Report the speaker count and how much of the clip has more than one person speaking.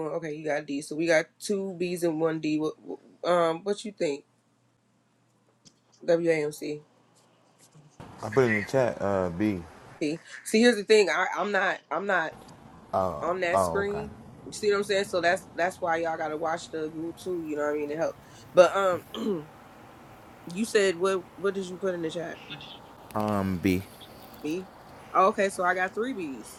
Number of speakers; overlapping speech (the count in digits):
2, about 2%